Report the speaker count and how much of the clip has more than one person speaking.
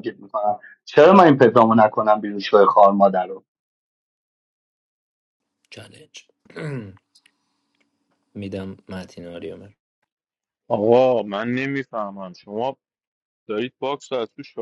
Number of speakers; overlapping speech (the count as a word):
three, no overlap